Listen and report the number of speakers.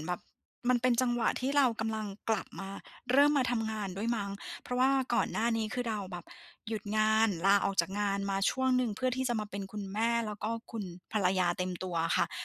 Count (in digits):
1